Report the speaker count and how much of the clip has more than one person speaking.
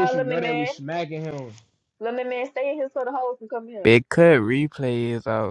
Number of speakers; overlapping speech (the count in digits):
3, about 16%